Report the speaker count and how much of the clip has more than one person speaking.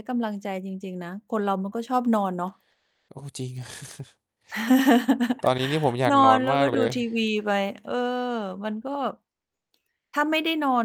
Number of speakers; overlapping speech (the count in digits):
2, about 8%